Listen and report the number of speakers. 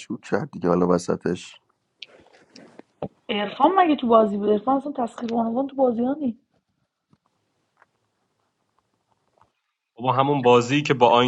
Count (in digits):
3